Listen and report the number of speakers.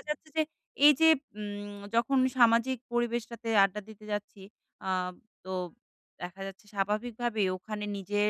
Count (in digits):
1